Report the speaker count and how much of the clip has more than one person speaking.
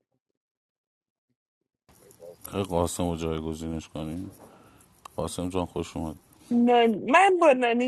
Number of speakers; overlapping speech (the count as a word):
two, no overlap